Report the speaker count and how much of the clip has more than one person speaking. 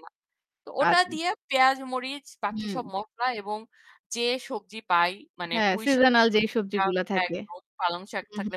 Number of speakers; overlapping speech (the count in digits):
2, about 20%